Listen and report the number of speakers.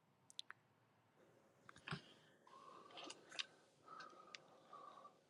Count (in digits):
0